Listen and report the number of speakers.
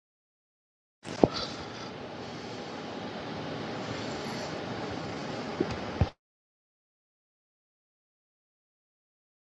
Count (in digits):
0